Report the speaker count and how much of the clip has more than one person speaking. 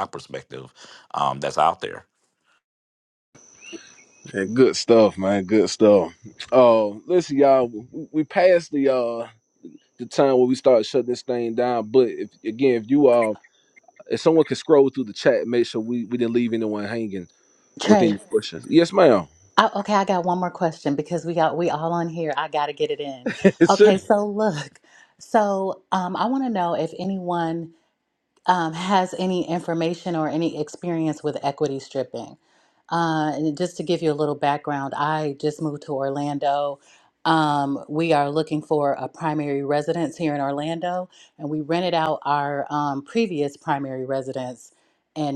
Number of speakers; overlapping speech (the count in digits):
3, about 1%